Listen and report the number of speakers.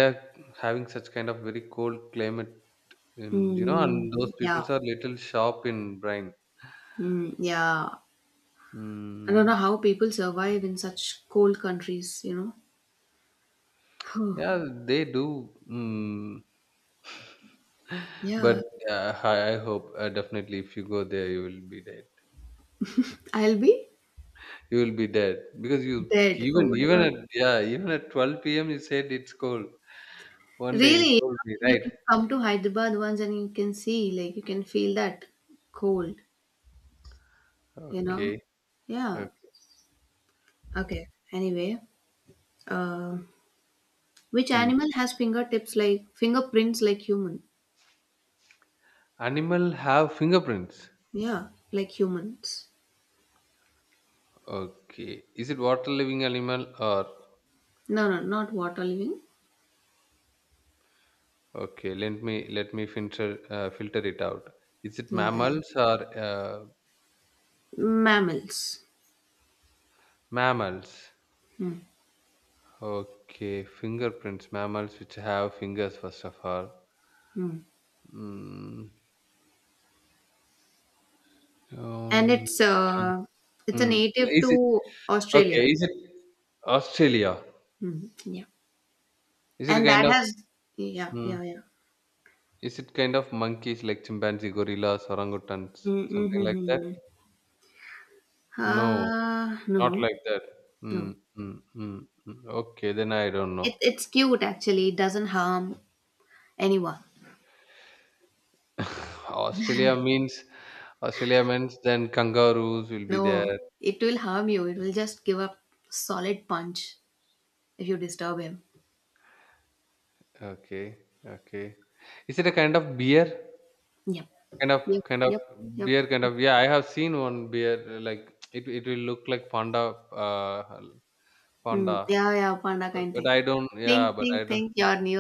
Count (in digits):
2